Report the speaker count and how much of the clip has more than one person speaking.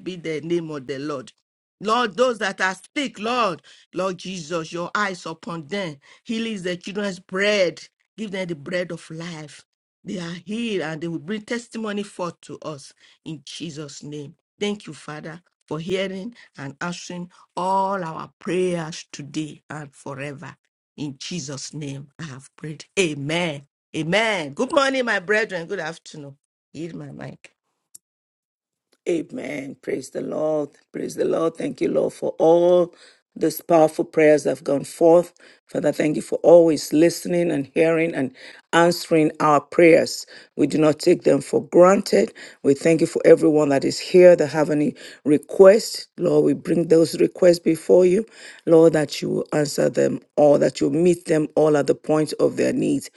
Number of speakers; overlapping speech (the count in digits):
2, no overlap